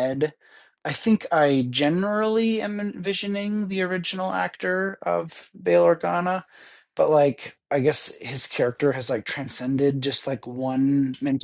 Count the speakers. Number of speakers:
one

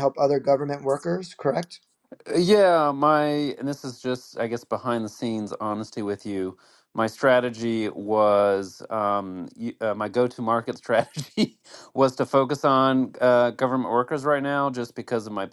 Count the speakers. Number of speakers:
two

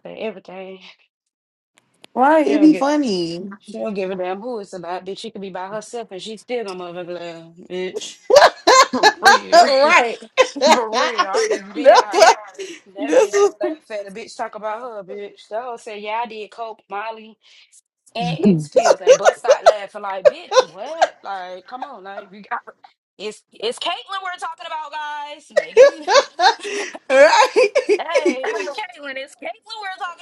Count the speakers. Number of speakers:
two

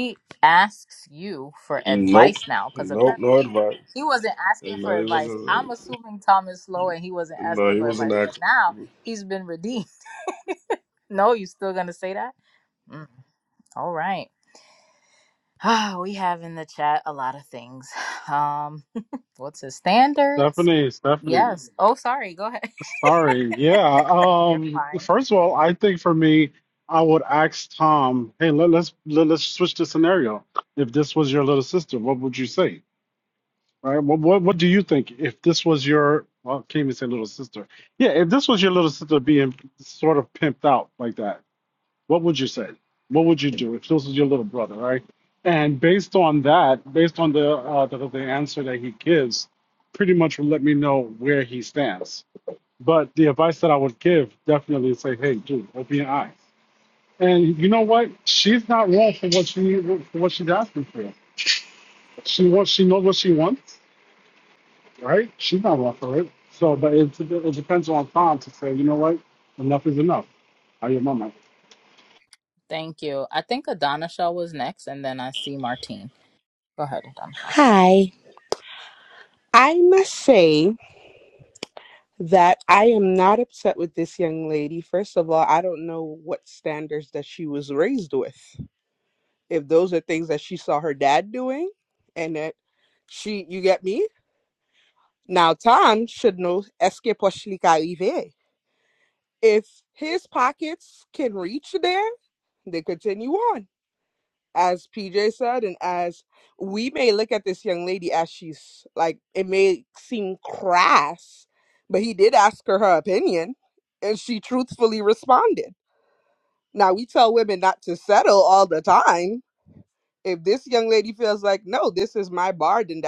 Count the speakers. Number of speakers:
four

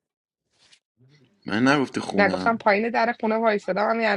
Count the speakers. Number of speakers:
two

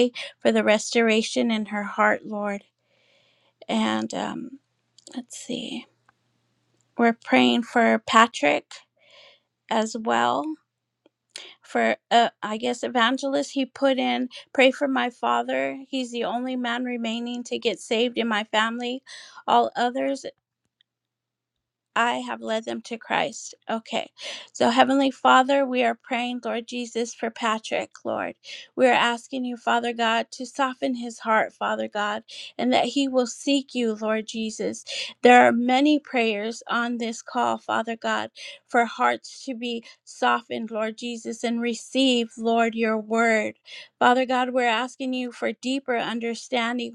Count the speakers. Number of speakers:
one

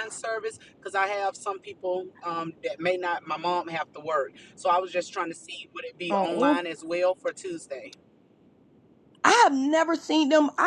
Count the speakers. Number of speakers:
two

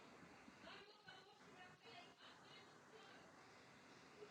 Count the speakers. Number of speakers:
zero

